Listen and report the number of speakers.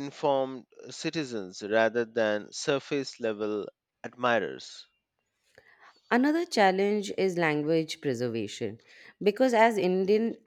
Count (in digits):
2